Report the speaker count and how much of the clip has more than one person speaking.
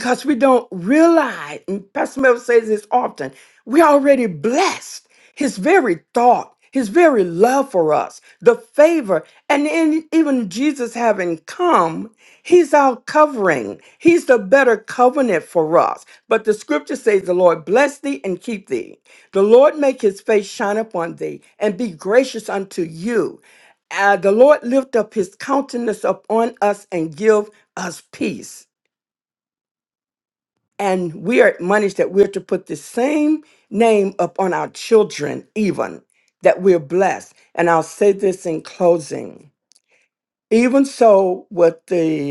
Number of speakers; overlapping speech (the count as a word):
one, no overlap